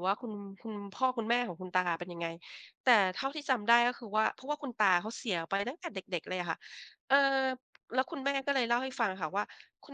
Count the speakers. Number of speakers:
one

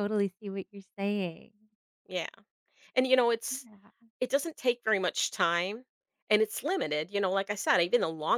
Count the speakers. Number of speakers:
two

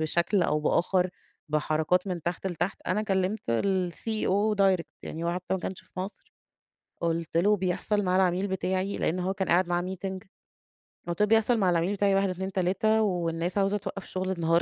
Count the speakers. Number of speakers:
one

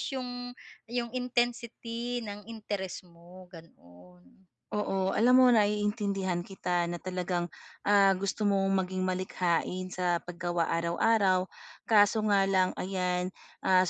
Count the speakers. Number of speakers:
two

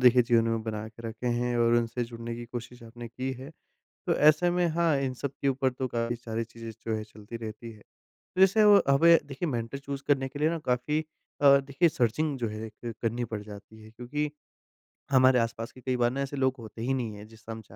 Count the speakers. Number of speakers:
one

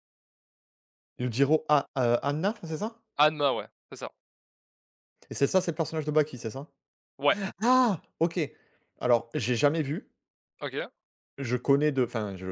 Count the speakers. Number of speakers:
two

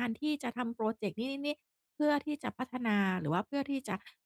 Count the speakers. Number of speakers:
one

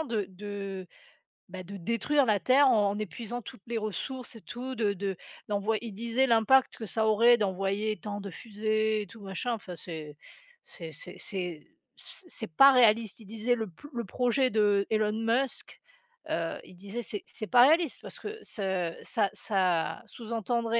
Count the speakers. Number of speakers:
one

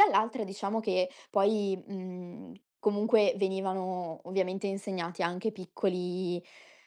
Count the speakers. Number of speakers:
one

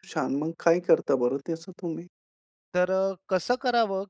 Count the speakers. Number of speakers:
two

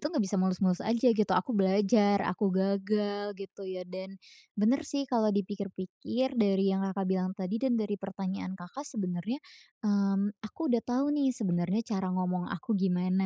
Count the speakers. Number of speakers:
one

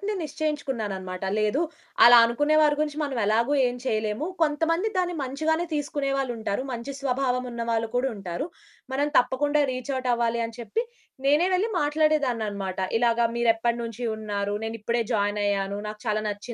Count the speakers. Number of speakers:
one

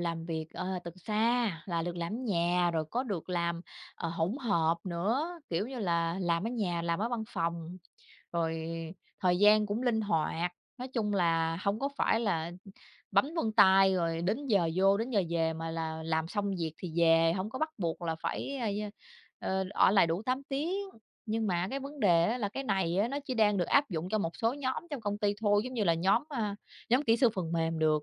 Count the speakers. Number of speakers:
one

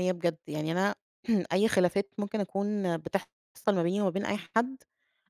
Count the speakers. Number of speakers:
one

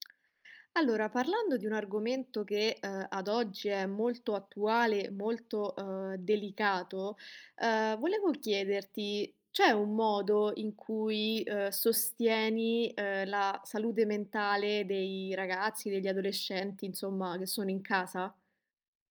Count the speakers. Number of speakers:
one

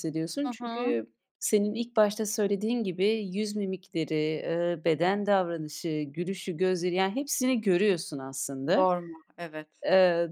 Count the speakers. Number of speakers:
two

